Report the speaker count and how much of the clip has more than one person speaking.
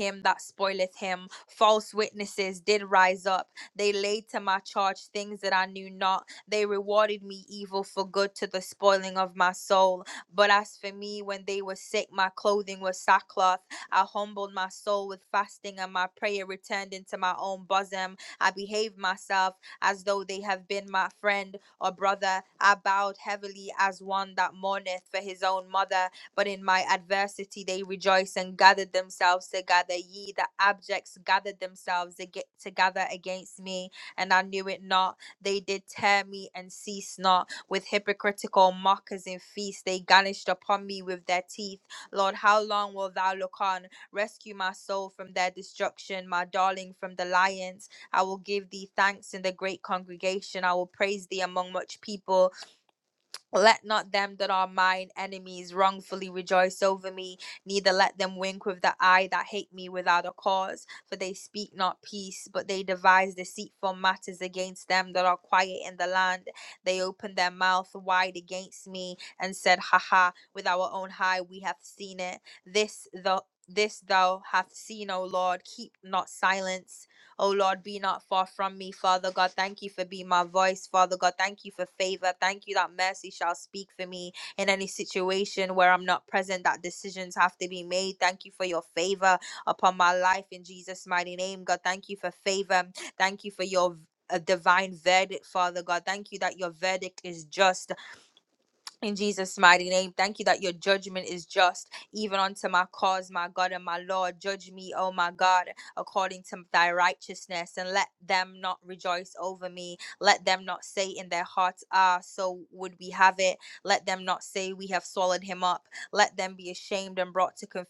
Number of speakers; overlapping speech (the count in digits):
1, no overlap